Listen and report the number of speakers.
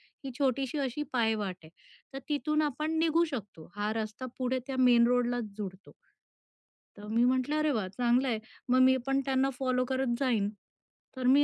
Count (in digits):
1